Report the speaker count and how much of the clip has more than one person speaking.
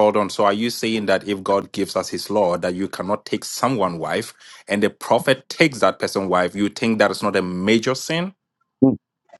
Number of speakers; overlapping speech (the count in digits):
1, no overlap